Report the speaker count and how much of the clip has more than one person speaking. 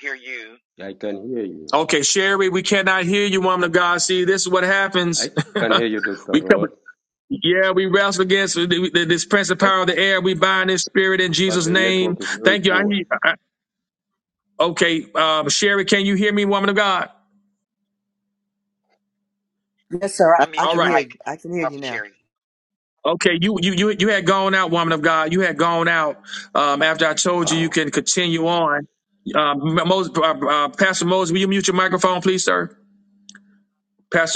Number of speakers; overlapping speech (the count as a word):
four, about 11%